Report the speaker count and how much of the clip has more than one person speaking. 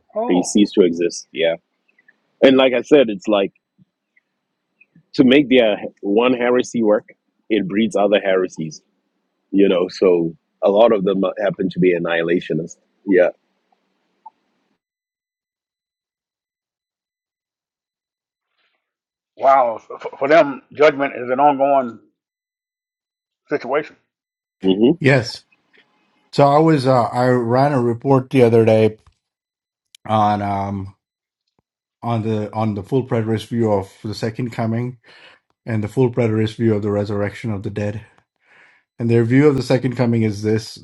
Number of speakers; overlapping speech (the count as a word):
three, under 1%